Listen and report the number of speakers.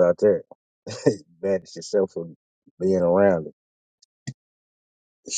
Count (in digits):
1